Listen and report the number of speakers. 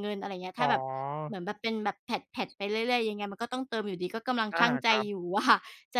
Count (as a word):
two